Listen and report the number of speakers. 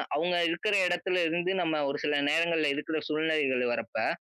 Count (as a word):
one